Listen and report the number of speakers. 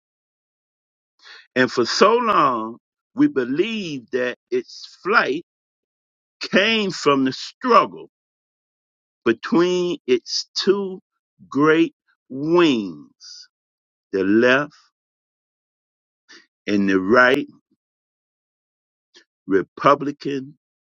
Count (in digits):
1